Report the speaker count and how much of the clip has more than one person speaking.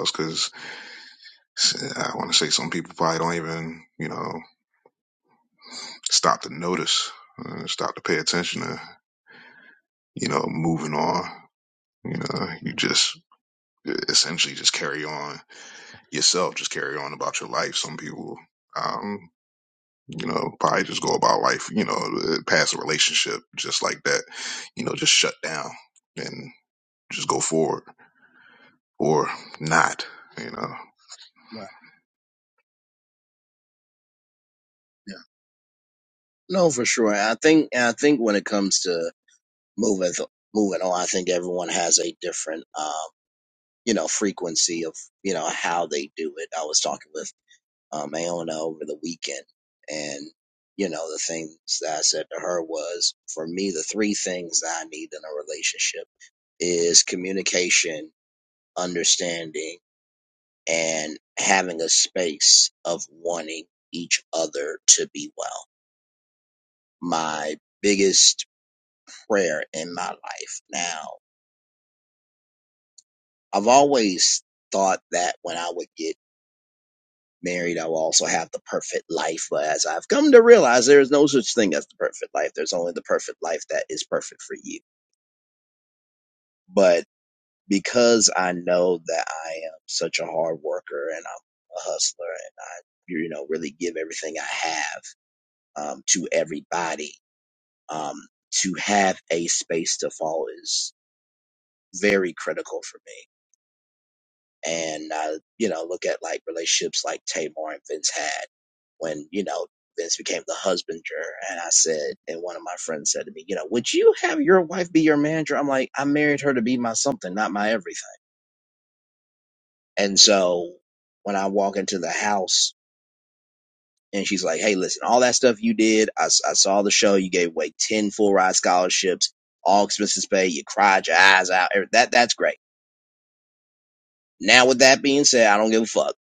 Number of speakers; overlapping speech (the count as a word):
two, no overlap